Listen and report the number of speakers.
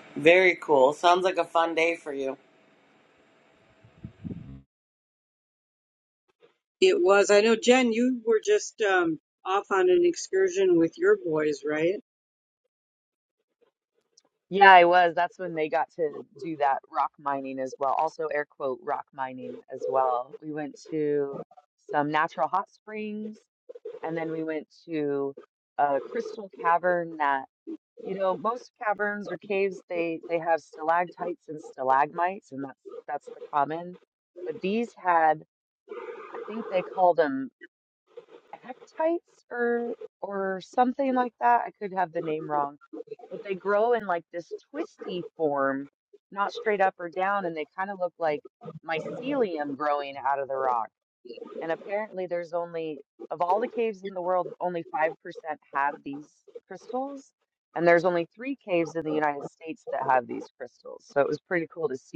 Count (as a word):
three